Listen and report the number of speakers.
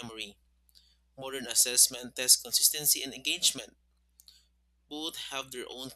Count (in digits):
1